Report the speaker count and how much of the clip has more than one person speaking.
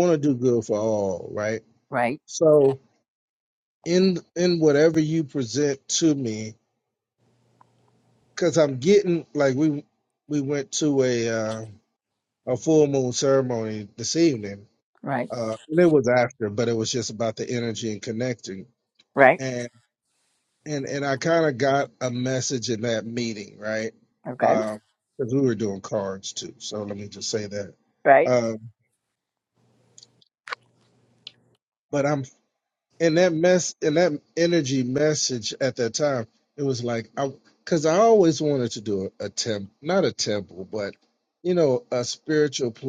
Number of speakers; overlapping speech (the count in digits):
2, about 1%